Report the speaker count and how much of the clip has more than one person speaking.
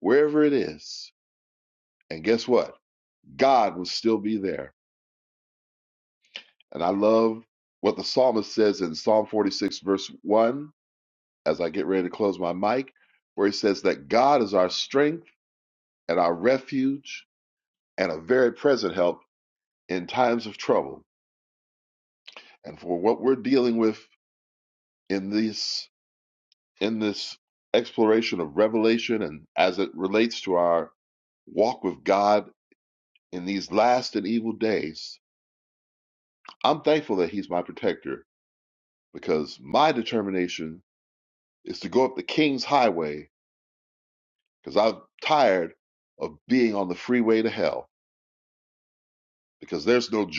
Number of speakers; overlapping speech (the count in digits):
1, no overlap